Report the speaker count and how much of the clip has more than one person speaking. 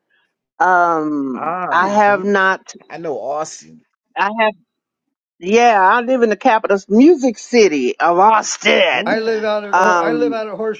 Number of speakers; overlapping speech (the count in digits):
3, about 16%